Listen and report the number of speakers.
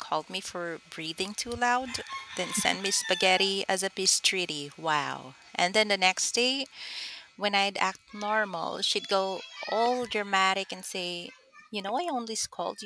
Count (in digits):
1